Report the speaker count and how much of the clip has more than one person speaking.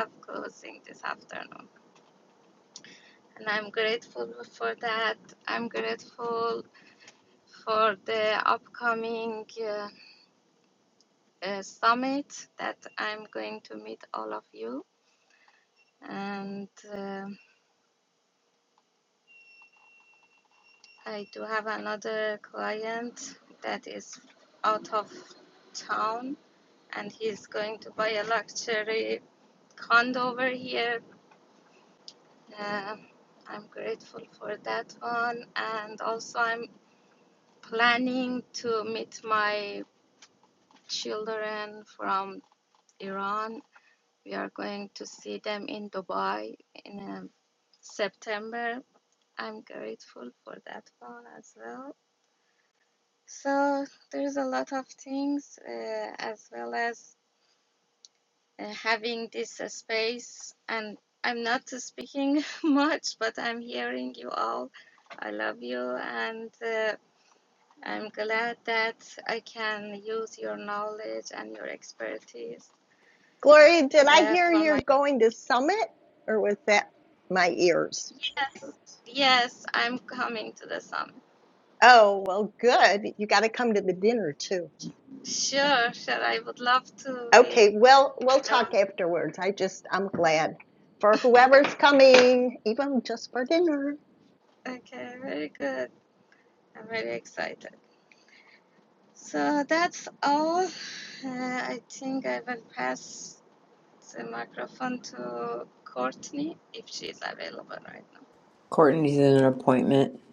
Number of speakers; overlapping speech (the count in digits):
3, about 1%